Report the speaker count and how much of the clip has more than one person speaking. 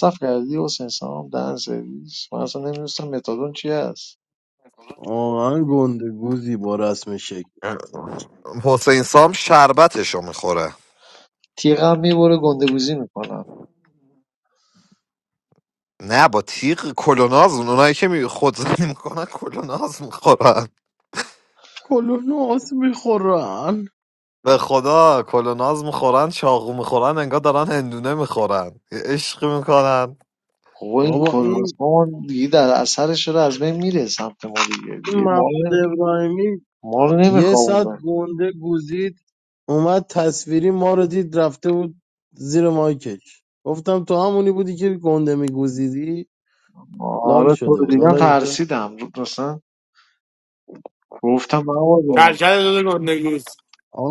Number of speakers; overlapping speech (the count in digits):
4, about 6%